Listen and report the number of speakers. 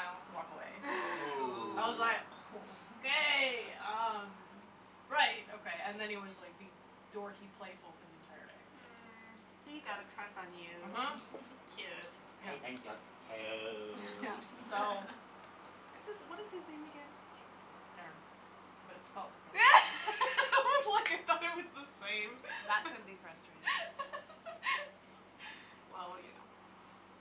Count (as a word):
four